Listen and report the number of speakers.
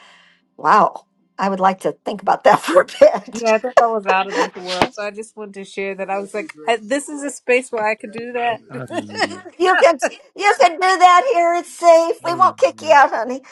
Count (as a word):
three